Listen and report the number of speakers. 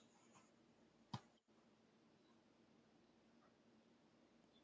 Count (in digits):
0